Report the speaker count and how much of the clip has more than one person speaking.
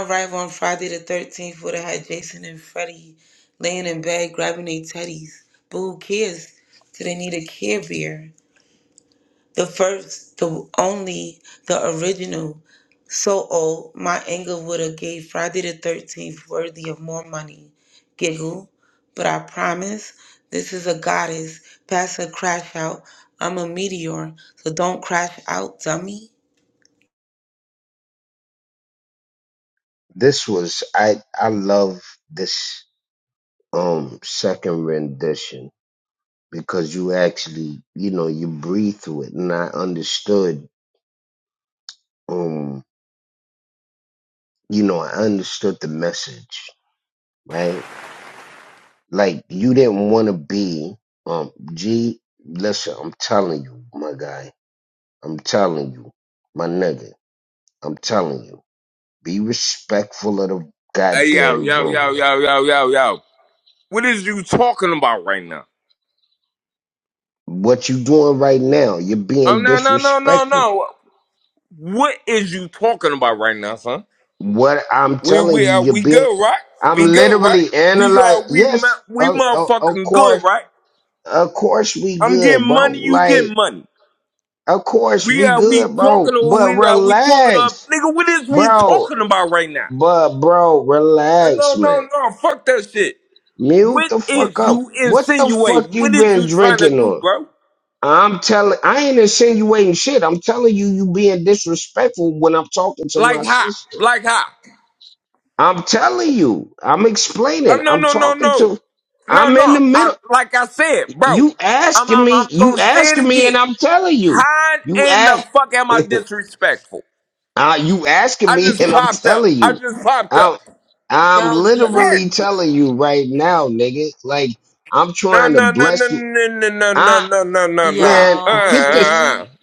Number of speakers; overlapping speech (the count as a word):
three, about 19%